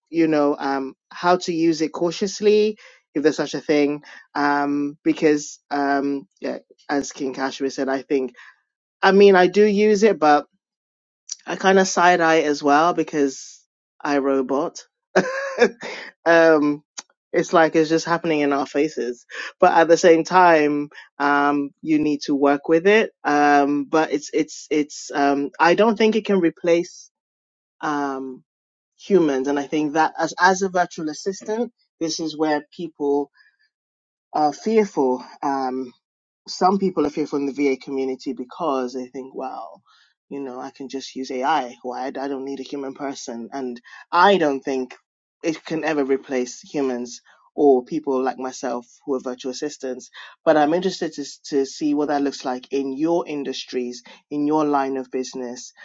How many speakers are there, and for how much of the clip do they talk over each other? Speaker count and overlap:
one, no overlap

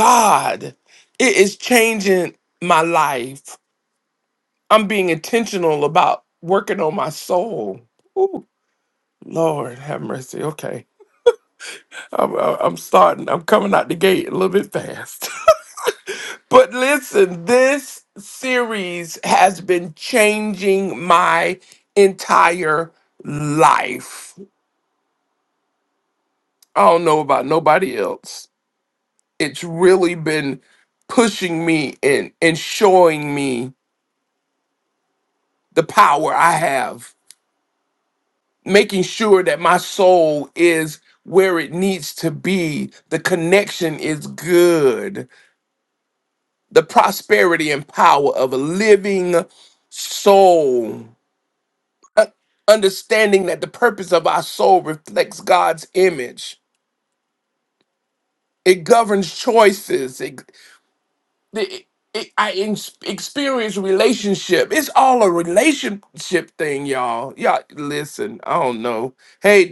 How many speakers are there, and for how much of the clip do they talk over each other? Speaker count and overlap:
one, no overlap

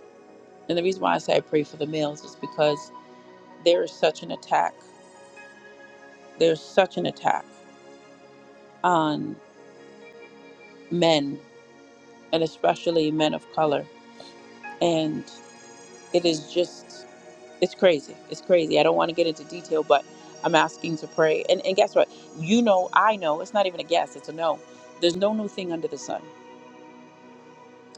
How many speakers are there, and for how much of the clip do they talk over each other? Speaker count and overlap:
one, no overlap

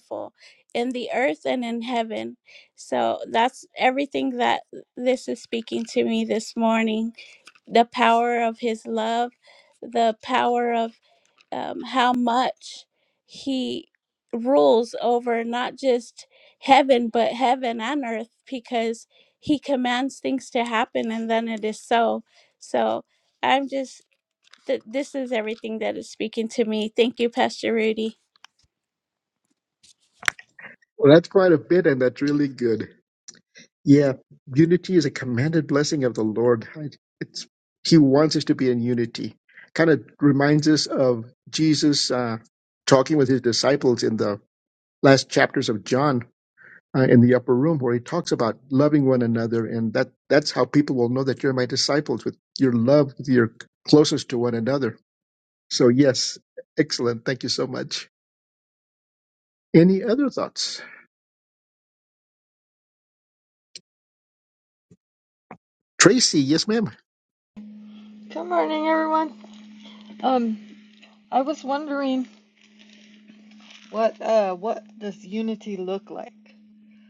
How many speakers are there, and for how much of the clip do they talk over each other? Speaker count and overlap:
three, no overlap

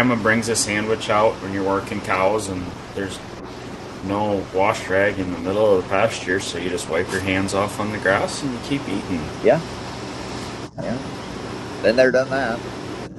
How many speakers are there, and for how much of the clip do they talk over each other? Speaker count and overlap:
two, no overlap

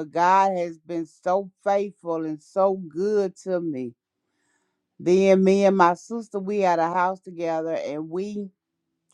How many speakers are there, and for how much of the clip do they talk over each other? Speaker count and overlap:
one, no overlap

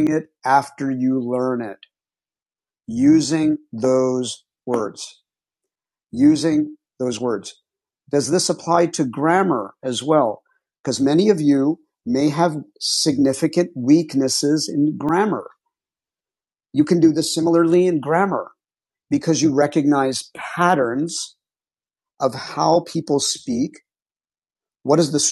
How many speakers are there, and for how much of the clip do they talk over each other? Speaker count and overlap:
one, no overlap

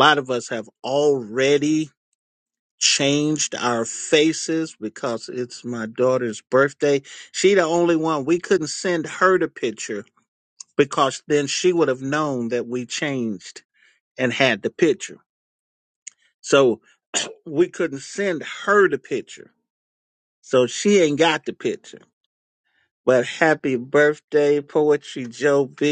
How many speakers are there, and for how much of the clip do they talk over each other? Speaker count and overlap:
one, no overlap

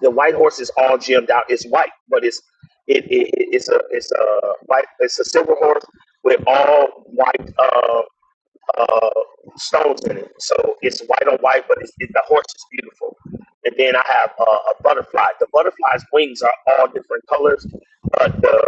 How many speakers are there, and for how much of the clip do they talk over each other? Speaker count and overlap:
one, no overlap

